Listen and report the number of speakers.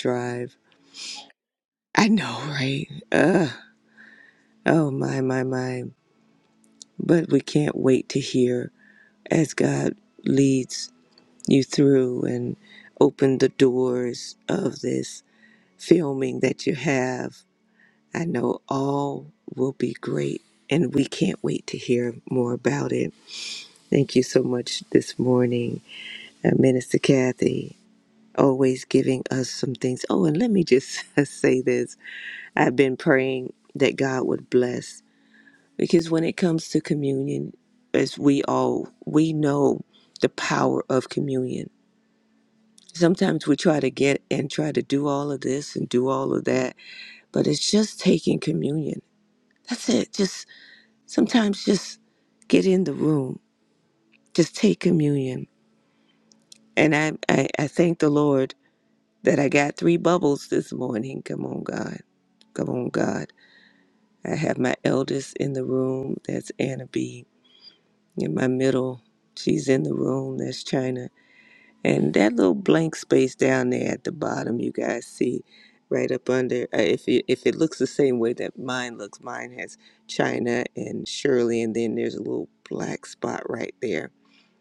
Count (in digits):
1